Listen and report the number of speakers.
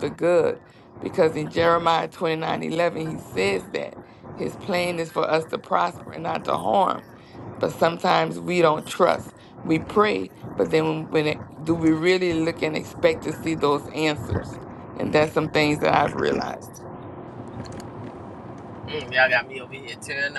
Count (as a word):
two